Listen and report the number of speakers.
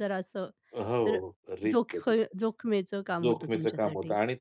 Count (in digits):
2